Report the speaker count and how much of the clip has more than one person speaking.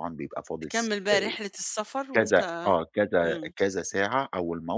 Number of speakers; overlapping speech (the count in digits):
2, about 23%